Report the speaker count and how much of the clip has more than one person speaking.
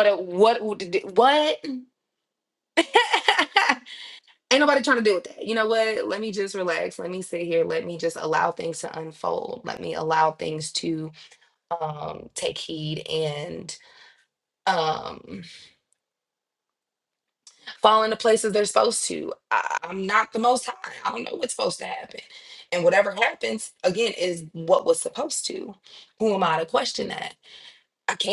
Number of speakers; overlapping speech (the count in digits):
1, no overlap